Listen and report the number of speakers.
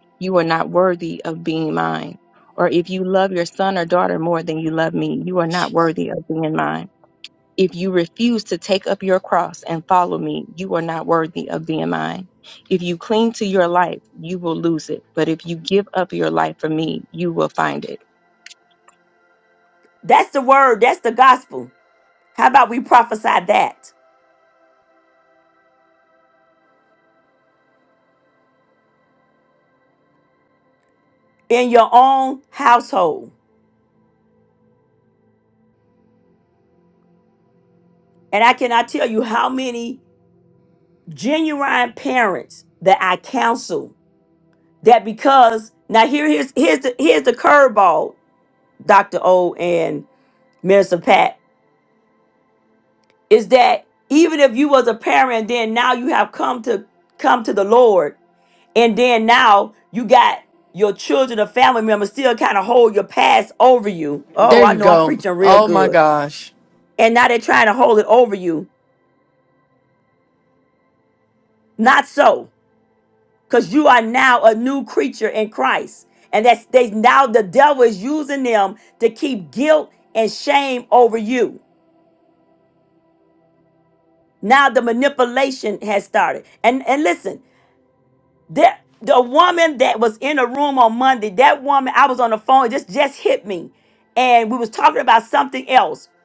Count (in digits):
3